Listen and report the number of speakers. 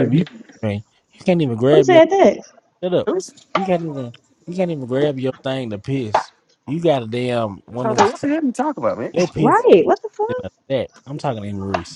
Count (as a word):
three